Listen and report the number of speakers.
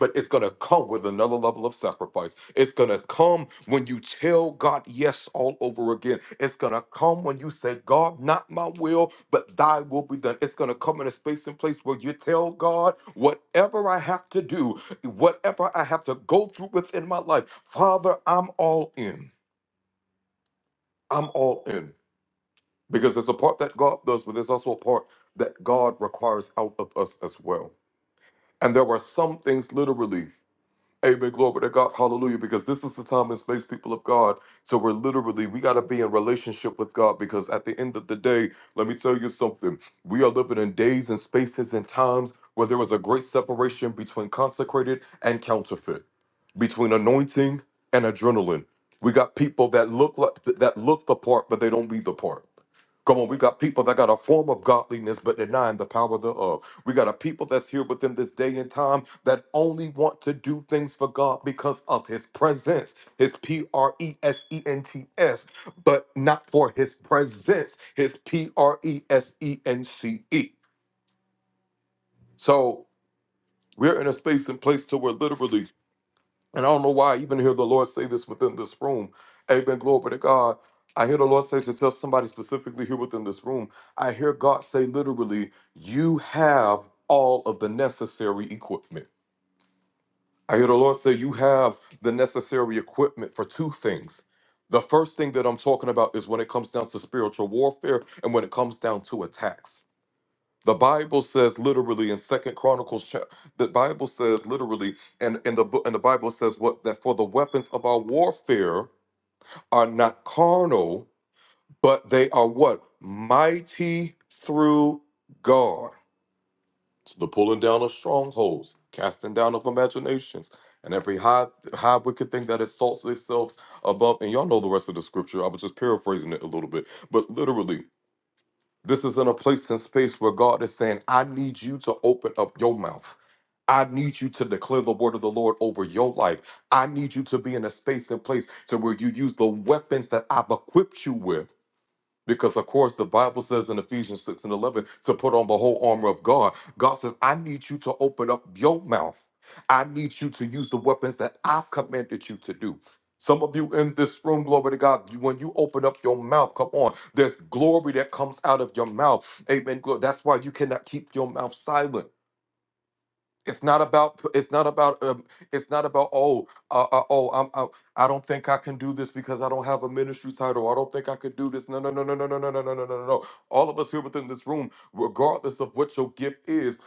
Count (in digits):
1